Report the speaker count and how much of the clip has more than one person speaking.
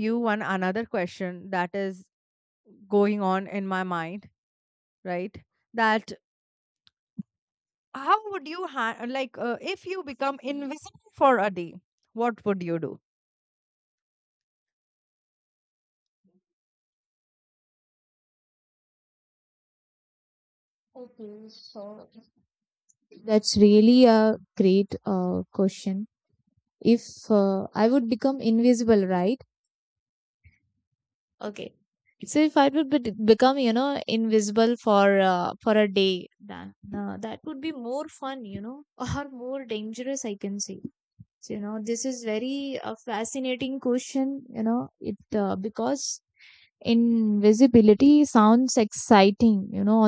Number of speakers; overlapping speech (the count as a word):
two, no overlap